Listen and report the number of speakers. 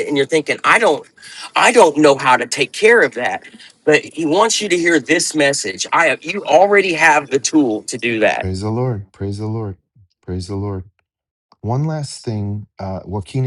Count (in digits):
2